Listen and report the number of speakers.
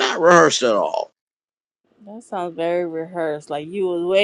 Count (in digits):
2